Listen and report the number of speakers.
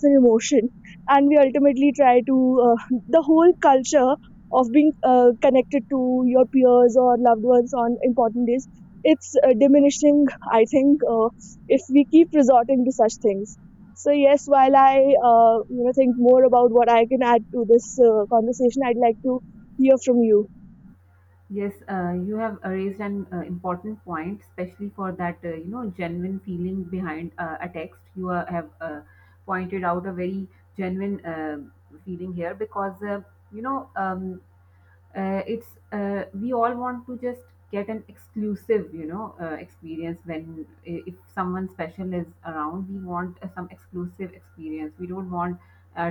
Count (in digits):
2